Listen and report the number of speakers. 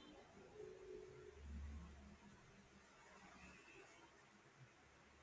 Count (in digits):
0